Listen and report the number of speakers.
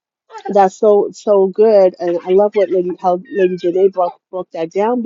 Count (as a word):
one